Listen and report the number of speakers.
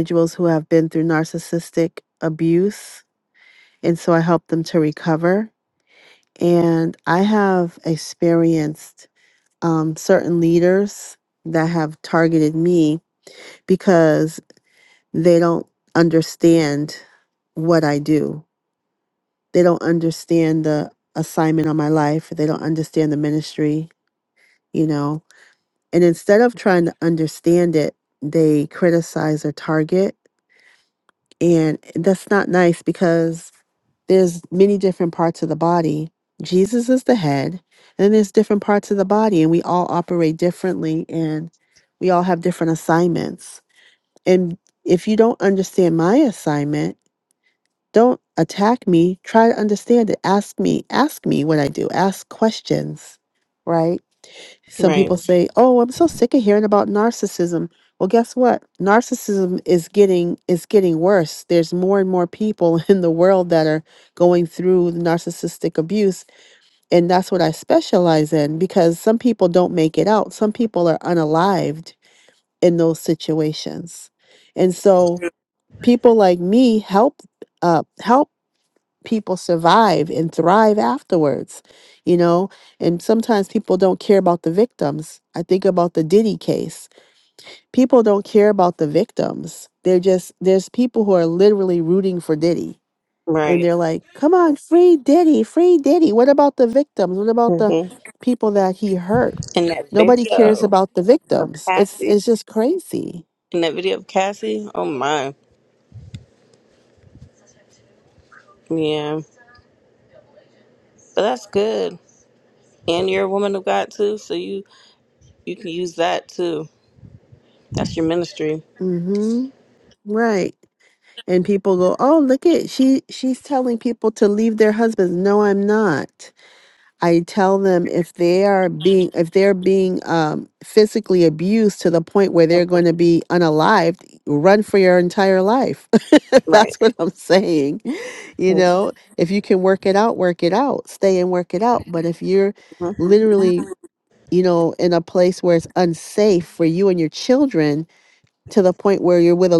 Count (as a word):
two